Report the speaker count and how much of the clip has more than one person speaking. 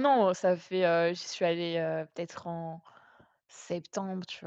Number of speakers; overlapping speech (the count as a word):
one, no overlap